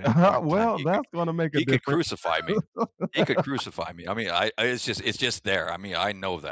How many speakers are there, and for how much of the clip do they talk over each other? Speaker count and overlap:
two, about 17%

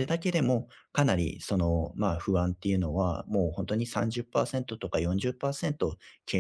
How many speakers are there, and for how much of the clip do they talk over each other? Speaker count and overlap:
one, no overlap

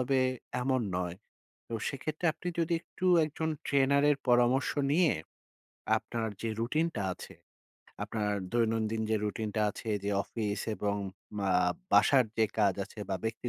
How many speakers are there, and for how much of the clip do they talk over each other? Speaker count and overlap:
one, no overlap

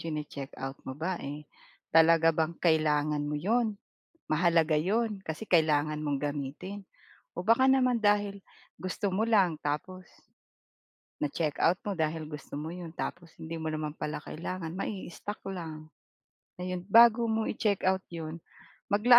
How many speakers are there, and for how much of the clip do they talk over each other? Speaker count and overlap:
one, no overlap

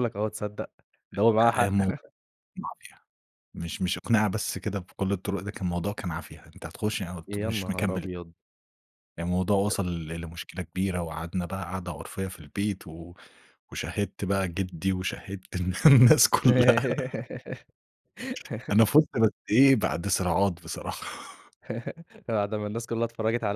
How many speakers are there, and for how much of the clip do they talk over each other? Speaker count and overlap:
two, about 5%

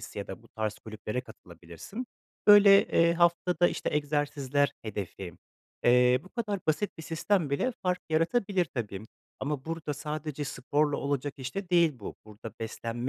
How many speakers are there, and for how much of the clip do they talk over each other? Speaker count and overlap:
one, no overlap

